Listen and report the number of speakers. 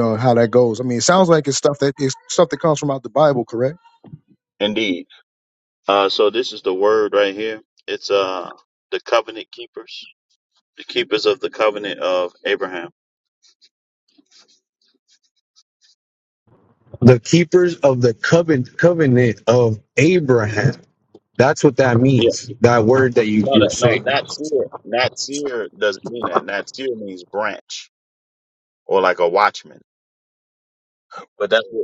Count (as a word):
three